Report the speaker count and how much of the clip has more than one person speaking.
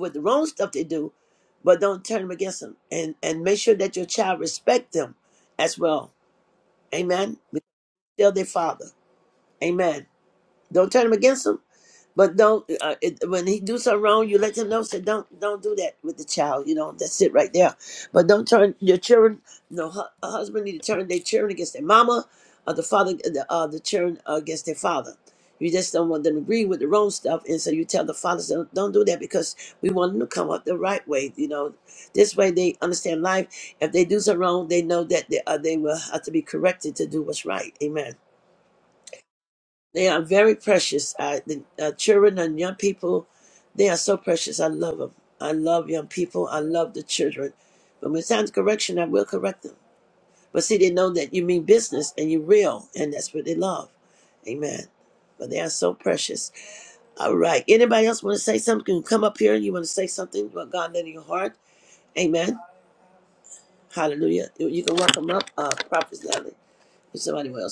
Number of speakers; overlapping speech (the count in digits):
1, no overlap